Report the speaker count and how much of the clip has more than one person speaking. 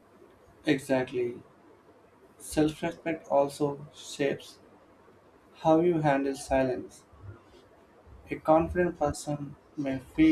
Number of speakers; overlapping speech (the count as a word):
one, no overlap